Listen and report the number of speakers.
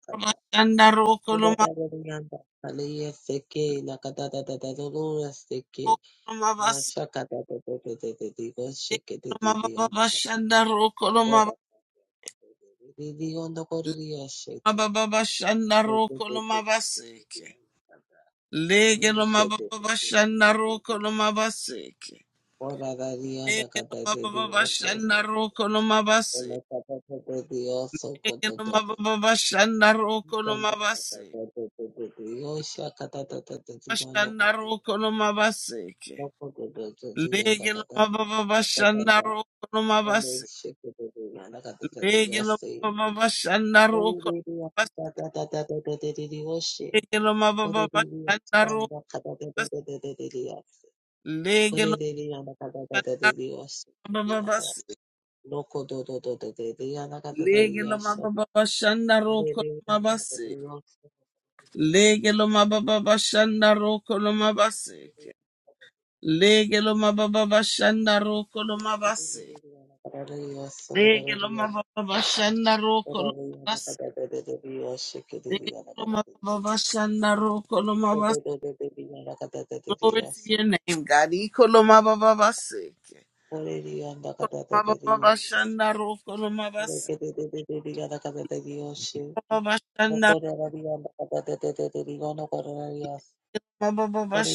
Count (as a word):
two